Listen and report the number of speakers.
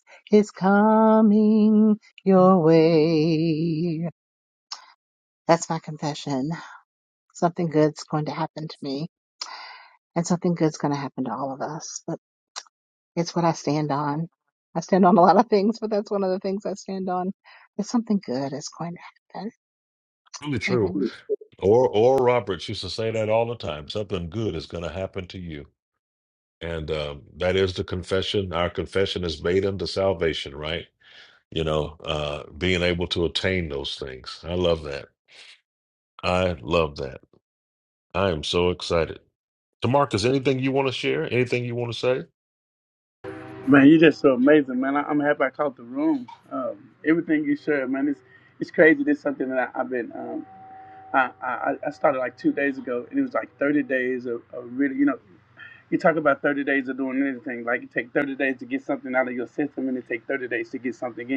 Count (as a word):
three